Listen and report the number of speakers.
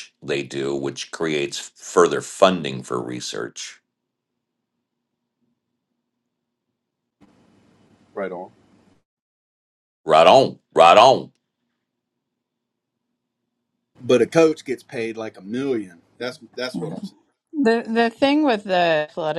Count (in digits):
3